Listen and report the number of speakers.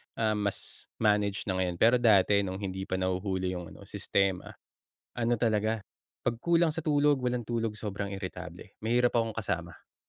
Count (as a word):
one